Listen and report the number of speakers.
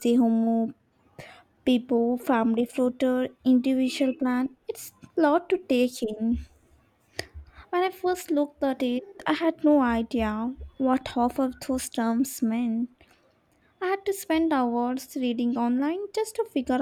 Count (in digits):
1